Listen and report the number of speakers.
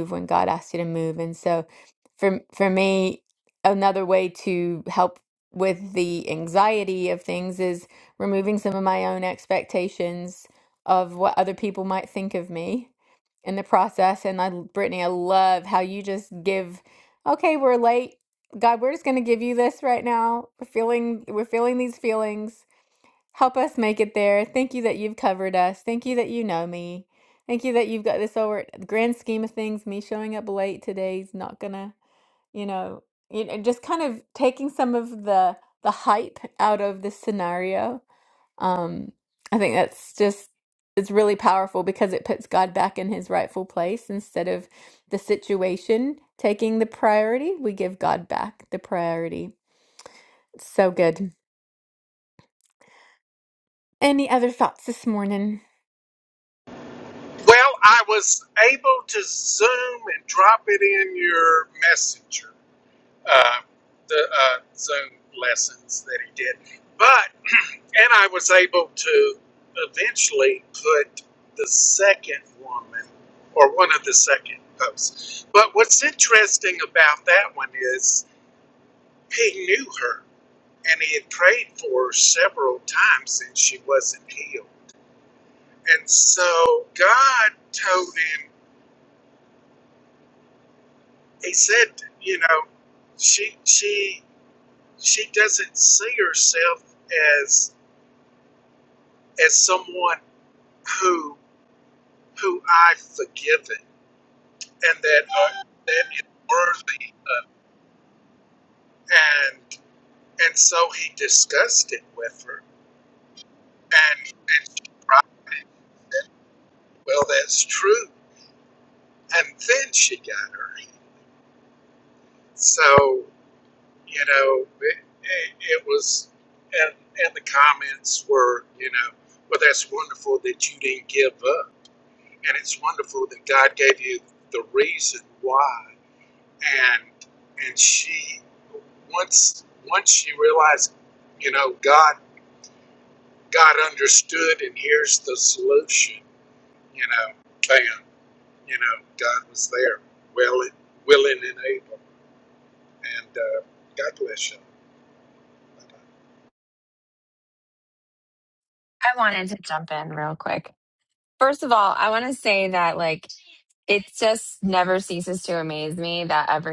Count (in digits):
3